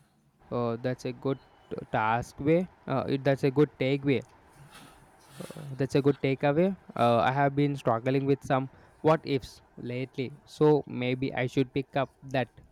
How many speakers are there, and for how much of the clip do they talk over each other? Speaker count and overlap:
1, no overlap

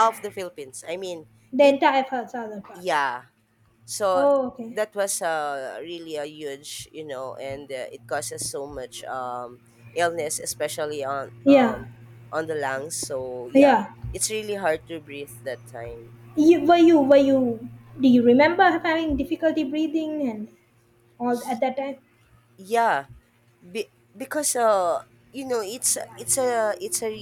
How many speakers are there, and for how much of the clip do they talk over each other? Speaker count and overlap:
2, about 4%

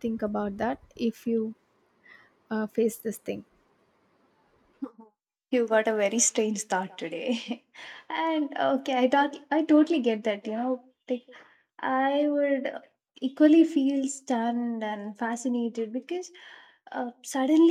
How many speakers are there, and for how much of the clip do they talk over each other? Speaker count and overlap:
2, no overlap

